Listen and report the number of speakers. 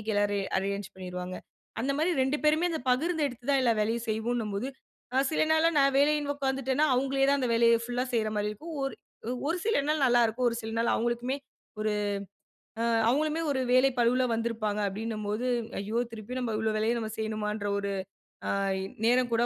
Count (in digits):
1